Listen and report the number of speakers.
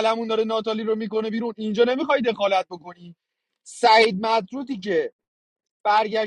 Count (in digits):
1